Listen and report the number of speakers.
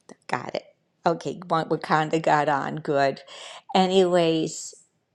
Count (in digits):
1